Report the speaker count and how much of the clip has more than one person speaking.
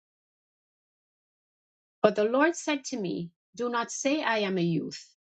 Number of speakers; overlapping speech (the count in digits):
1, no overlap